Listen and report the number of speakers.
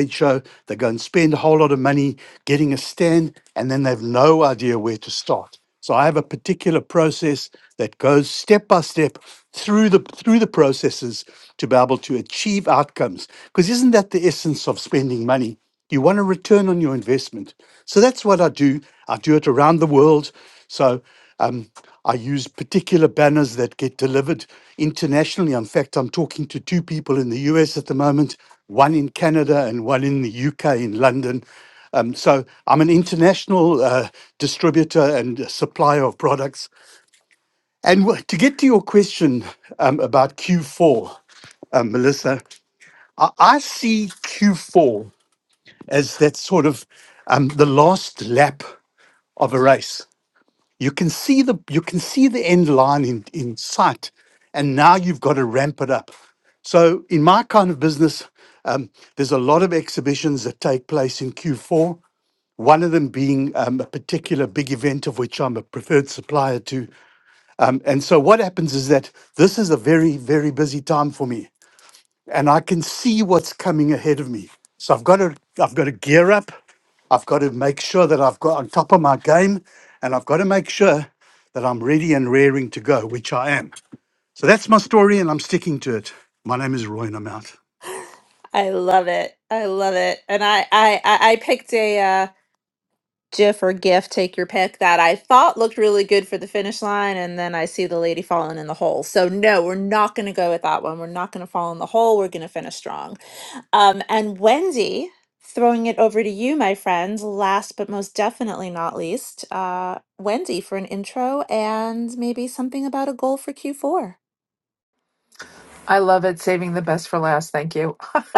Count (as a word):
three